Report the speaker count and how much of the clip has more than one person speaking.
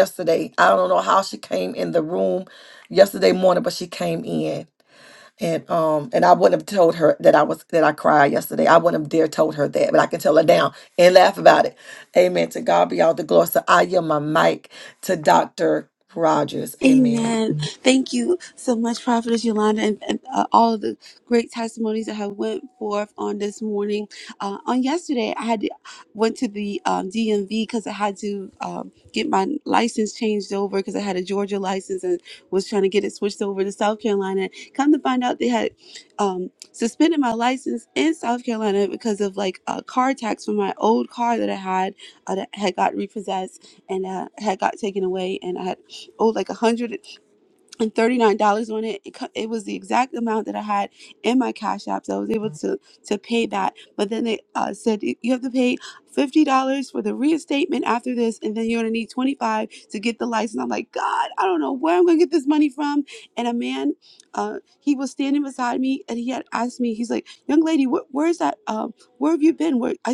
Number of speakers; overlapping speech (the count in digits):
2, about 1%